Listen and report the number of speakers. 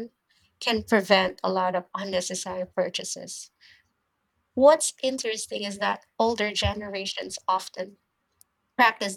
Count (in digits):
1